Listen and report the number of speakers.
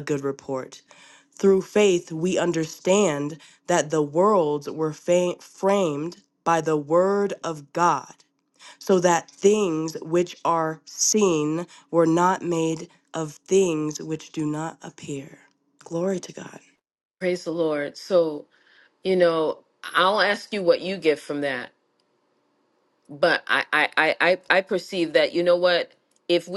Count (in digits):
2